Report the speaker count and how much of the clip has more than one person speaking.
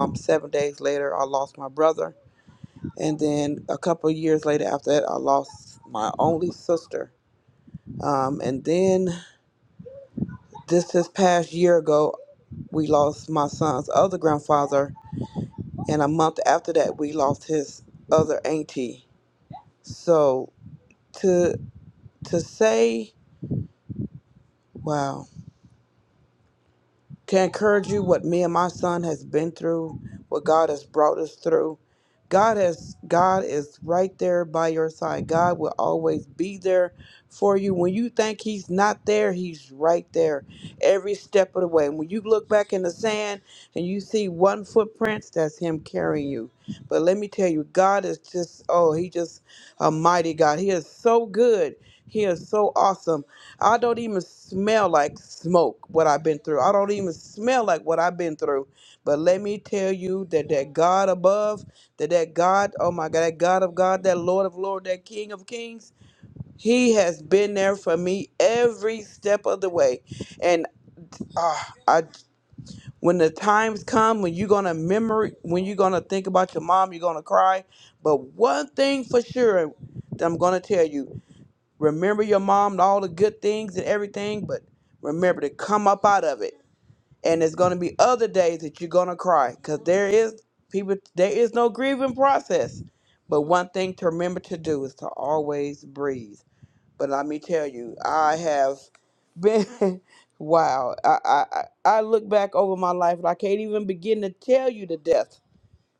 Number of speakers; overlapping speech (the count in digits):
1, no overlap